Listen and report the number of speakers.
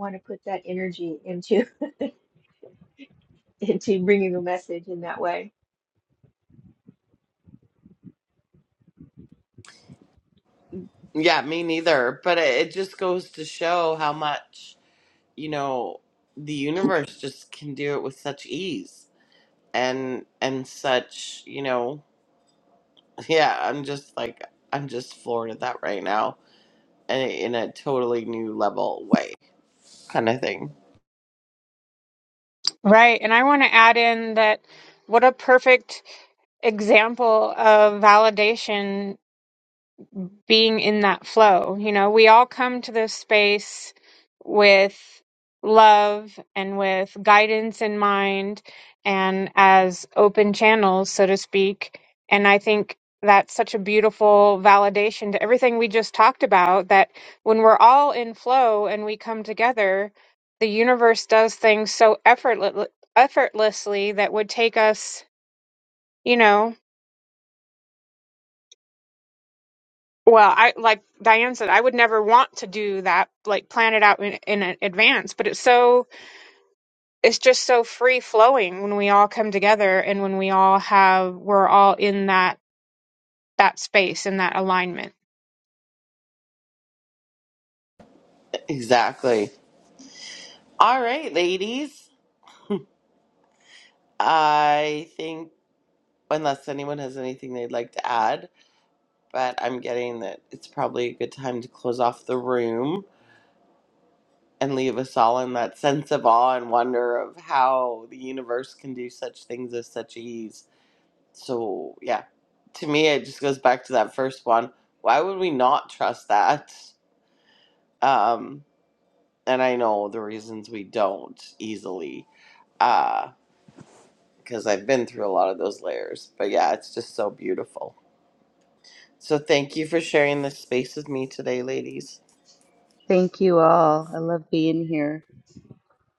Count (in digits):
4